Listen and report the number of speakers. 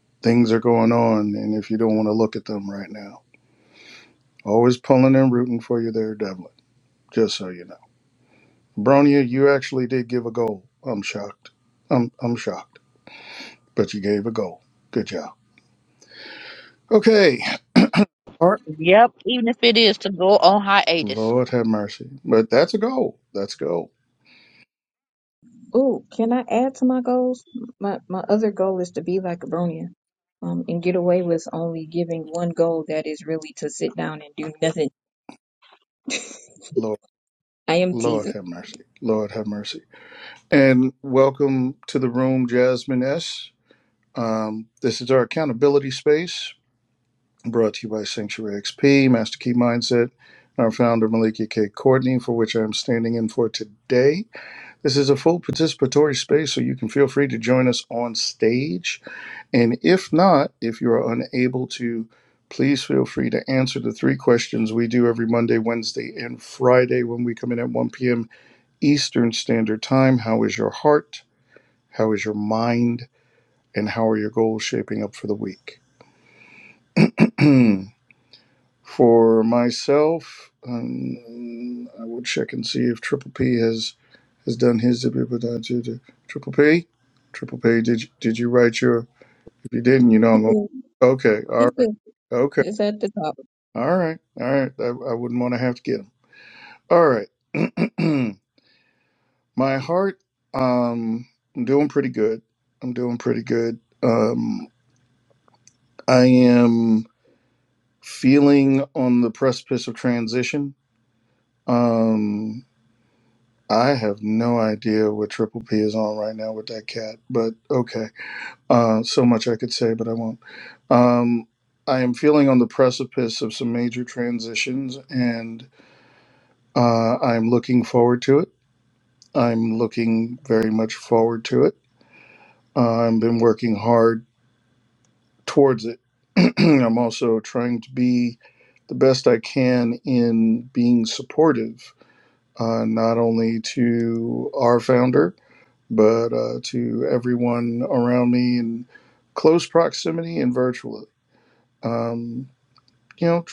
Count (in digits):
3